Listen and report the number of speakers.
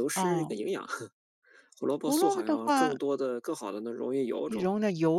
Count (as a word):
two